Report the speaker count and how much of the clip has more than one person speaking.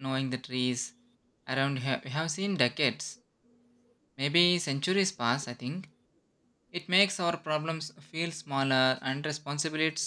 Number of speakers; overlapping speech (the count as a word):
one, no overlap